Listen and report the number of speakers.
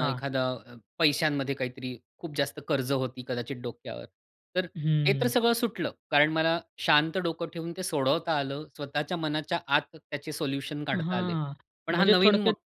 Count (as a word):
two